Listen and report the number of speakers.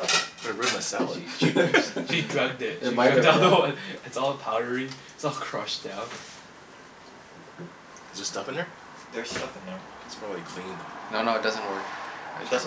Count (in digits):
4